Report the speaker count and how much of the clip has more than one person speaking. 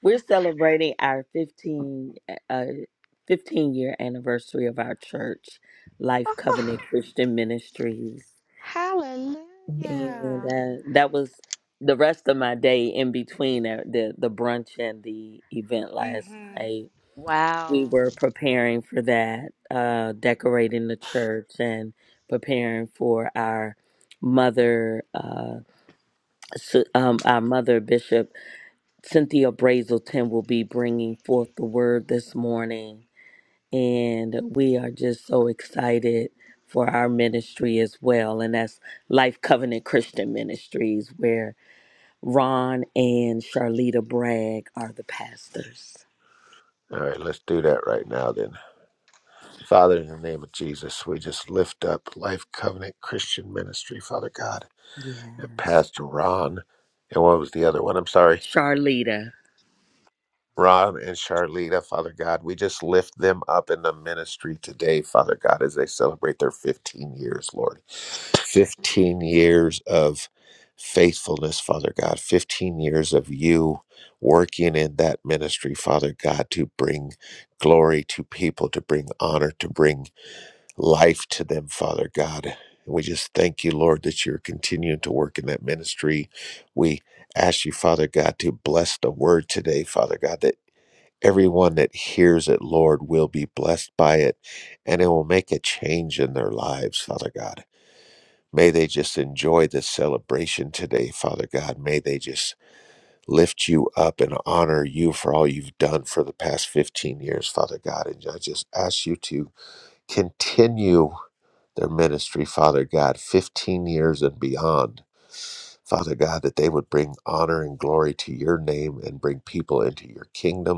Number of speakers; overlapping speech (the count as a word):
three, about 1%